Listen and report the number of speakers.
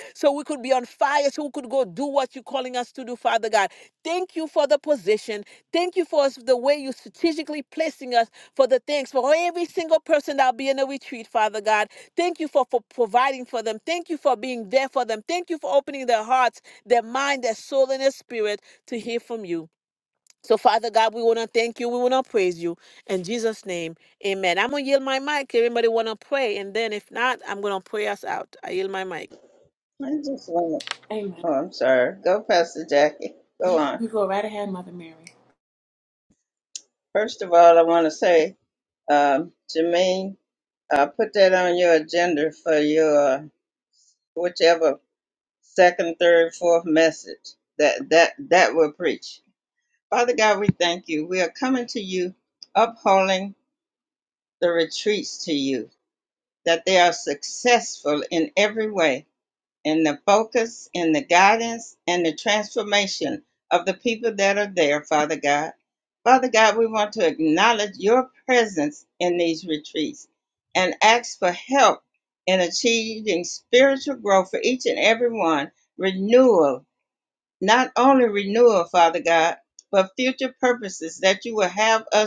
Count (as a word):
three